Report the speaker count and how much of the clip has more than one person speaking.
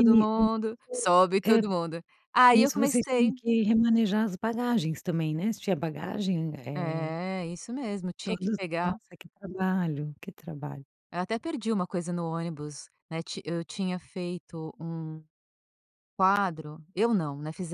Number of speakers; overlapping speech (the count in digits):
2, about 14%